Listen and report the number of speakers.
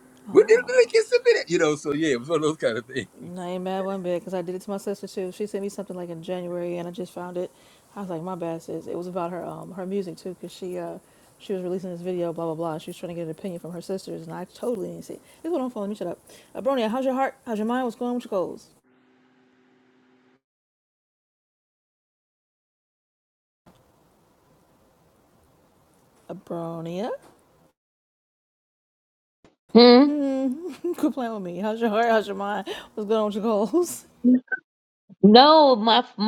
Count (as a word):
three